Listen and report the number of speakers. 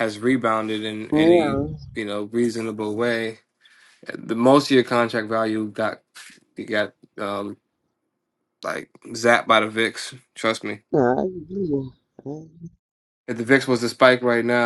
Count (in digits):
2